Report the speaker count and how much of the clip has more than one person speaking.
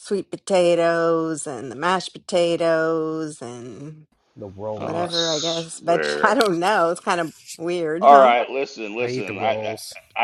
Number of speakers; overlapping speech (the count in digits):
3, about 23%